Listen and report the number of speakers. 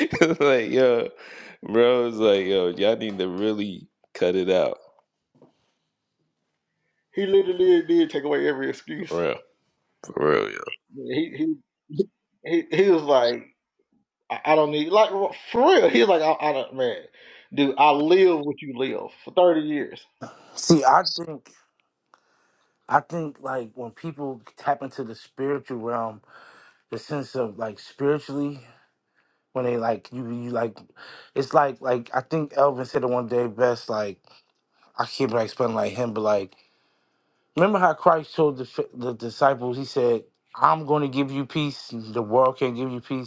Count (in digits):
3